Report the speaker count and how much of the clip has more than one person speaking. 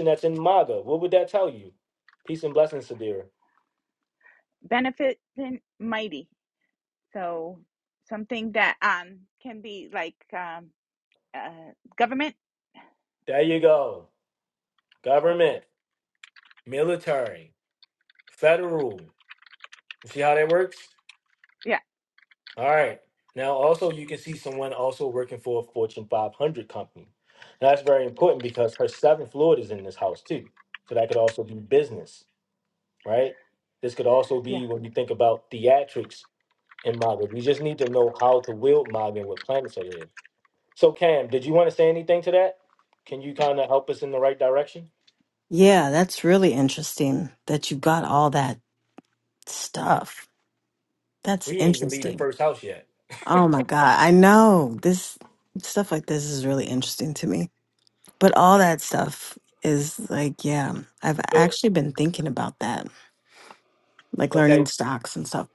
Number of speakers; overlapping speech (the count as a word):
three, about 2%